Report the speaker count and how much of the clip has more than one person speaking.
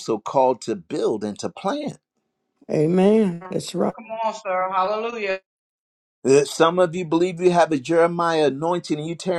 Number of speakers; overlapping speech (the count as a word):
three, under 1%